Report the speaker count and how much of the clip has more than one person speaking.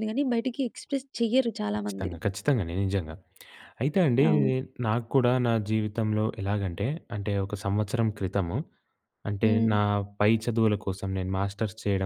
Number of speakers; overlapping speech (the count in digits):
2, about 8%